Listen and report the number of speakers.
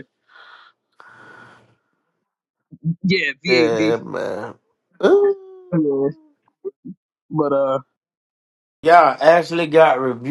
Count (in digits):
3